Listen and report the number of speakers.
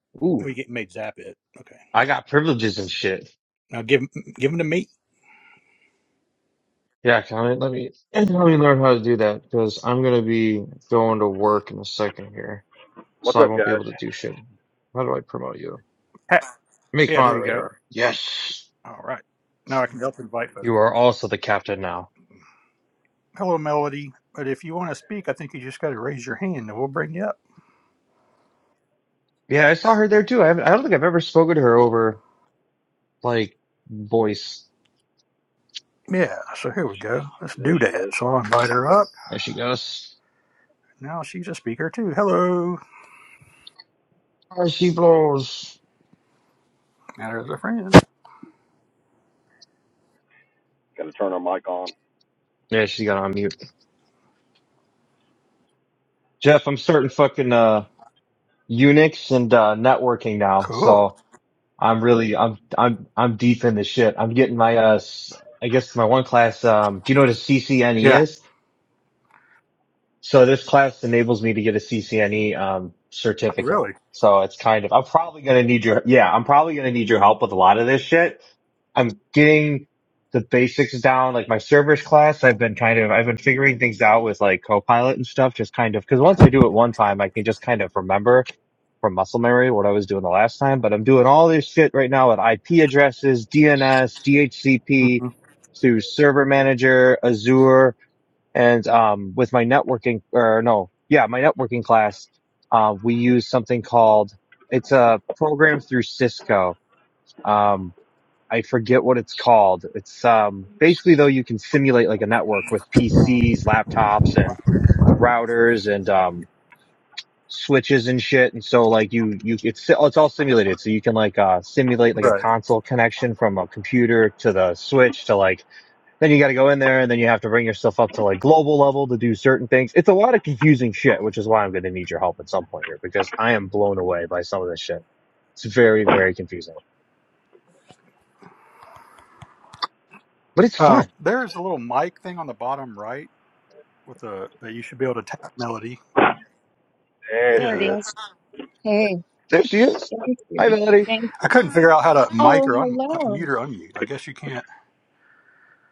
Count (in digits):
4